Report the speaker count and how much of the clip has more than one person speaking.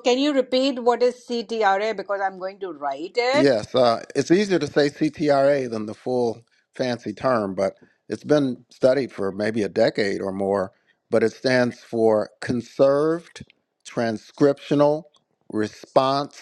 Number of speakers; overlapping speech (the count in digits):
2, about 1%